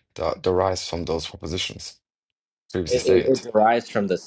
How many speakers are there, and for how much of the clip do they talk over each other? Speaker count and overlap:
2, about 13%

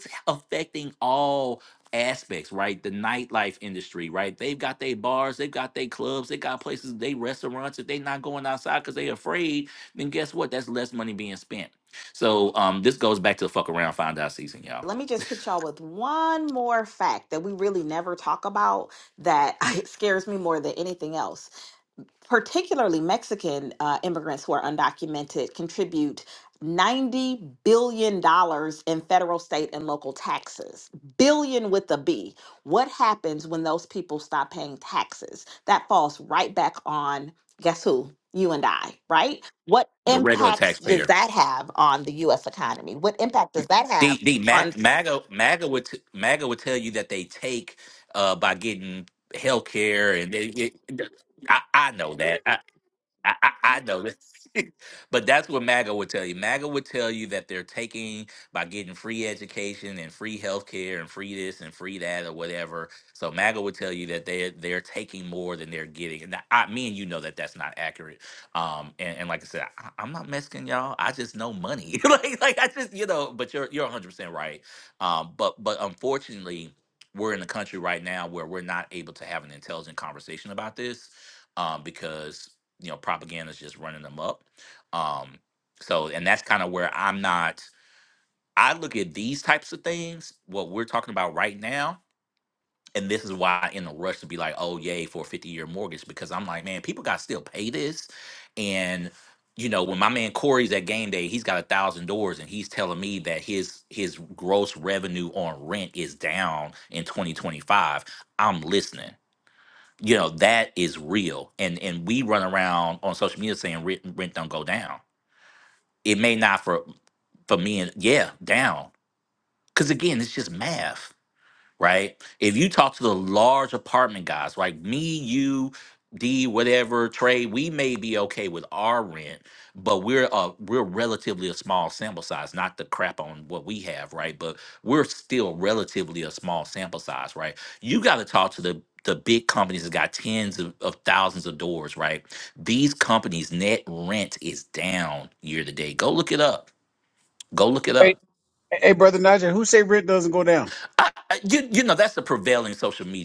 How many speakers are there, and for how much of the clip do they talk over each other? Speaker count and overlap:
3, about 1%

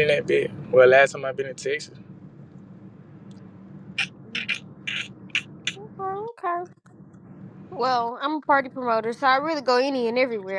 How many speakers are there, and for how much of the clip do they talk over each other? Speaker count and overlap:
2, no overlap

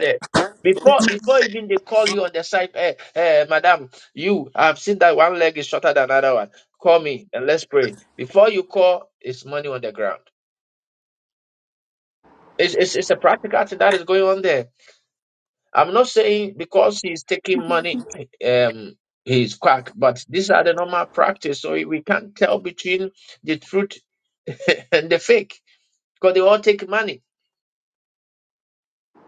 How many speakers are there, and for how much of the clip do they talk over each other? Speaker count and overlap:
1, no overlap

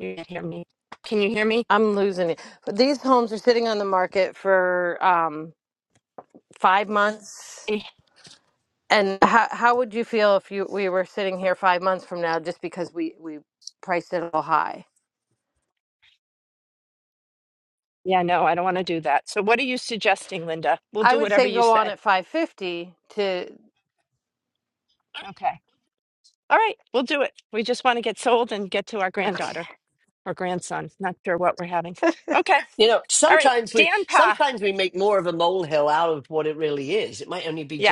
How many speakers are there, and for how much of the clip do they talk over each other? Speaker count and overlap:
3, about 6%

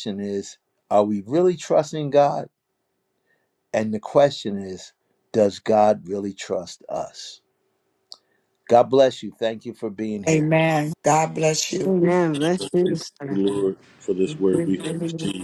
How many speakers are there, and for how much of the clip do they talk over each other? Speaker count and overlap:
4, about 12%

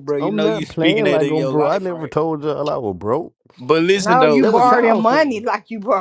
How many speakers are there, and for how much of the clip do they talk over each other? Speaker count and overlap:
3, about 55%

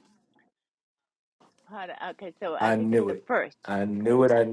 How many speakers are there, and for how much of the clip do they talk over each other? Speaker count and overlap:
2, about 18%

